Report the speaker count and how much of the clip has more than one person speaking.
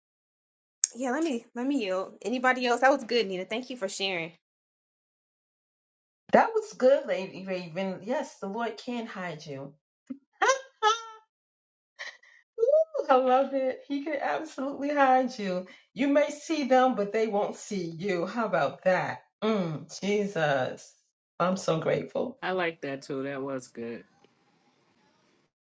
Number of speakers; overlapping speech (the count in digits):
3, no overlap